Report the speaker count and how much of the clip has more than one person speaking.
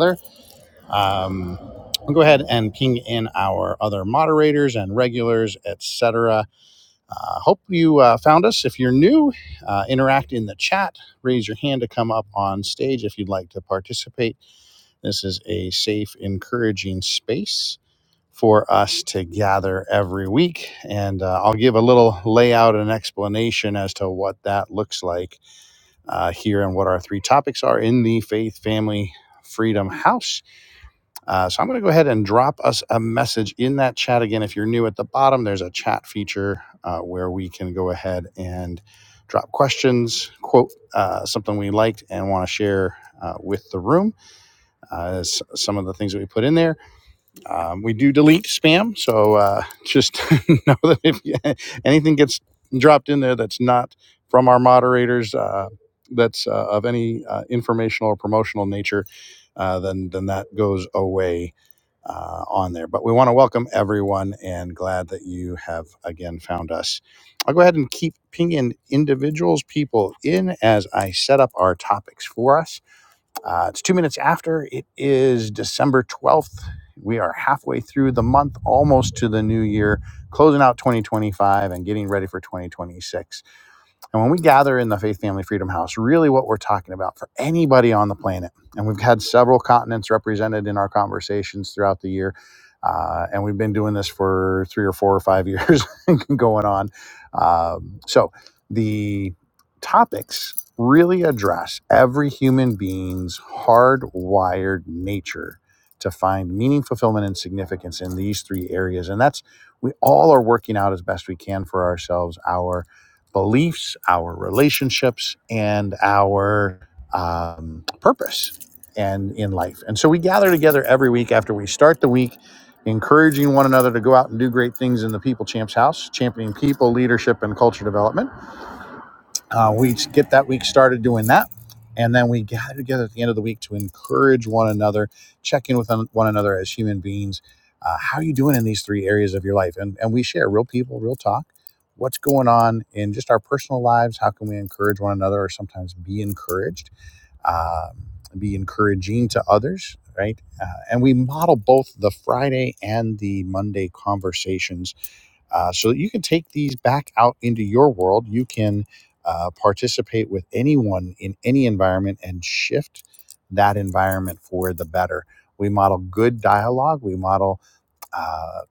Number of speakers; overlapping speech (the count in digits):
1, no overlap